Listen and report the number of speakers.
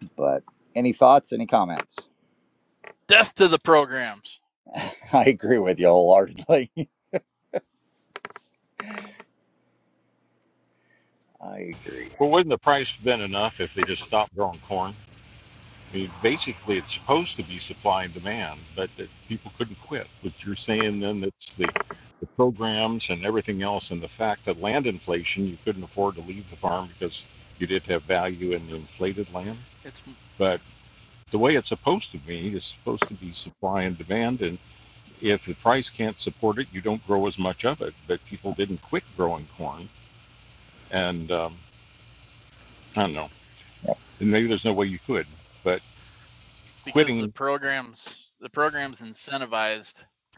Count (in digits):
3